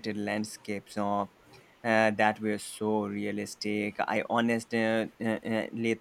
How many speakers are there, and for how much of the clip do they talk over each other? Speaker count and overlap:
one, no overlap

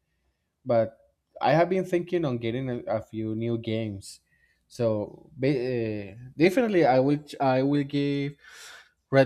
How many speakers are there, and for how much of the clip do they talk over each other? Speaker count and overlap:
one, no overlap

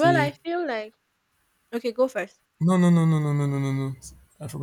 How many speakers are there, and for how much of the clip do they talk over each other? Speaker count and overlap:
two, about 7%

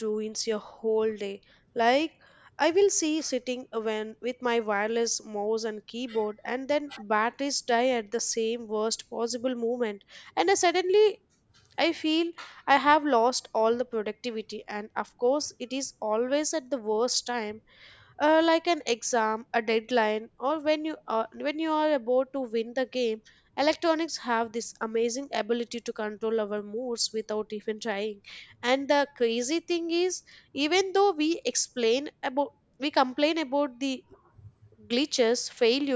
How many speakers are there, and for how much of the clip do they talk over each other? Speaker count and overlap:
one, no overlap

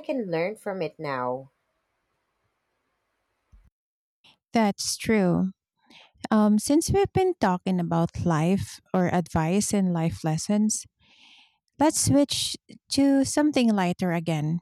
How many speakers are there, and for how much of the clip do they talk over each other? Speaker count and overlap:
two, no overlap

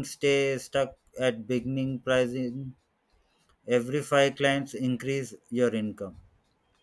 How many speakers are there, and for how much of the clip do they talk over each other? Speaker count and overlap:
one, no overlap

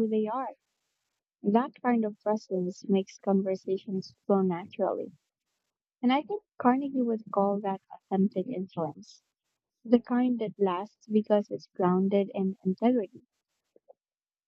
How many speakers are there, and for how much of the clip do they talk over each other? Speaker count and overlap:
one, no overlap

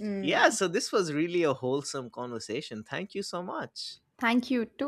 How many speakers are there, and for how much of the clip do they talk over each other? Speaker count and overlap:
two, about 7%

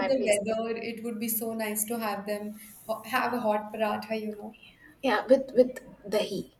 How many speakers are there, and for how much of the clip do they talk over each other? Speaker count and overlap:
two, about 5%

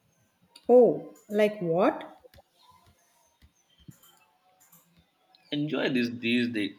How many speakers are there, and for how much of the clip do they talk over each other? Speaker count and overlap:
two, no overlap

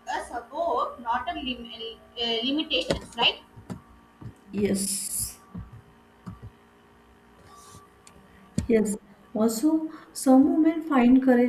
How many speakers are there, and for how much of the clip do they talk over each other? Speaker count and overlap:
two, no overlap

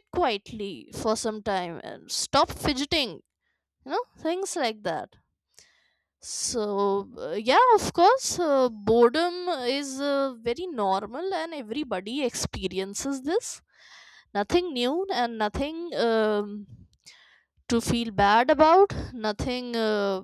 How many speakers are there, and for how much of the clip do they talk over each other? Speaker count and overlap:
one, no overlap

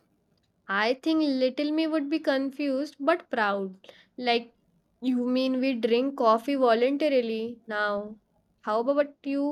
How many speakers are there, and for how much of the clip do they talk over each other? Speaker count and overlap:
one, no overlap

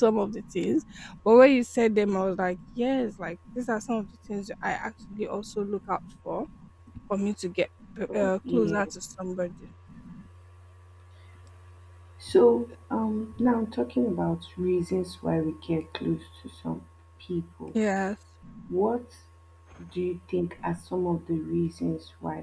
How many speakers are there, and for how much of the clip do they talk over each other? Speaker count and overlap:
two, about 3%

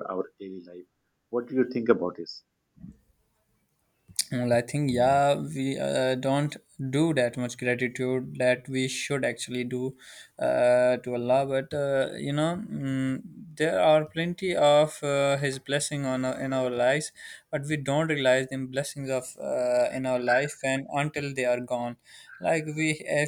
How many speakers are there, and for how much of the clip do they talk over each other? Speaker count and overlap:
two, no overlap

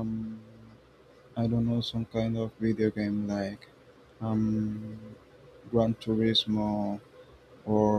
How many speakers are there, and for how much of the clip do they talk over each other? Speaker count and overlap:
one, no overlap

